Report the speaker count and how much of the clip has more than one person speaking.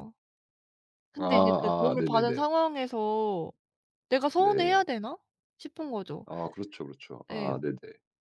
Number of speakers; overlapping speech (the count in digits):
2, about 24%